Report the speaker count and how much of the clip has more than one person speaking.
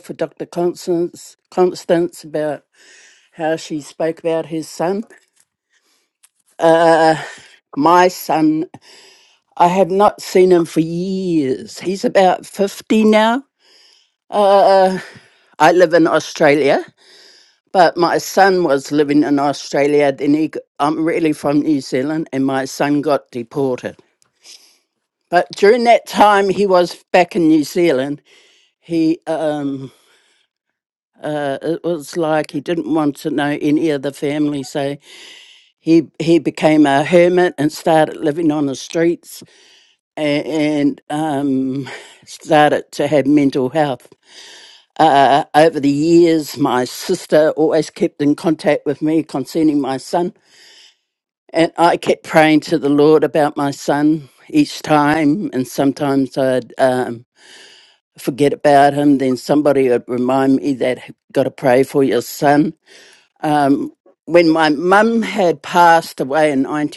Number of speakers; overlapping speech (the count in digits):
1, no overlap